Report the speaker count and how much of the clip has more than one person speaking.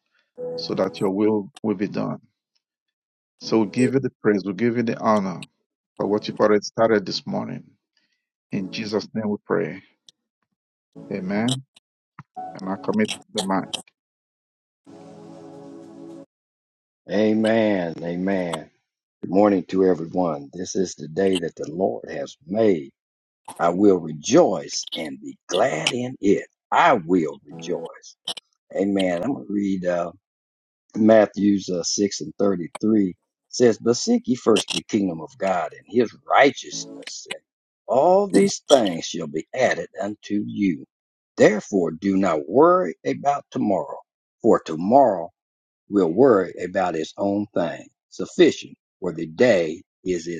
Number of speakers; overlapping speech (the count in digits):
2, no overlap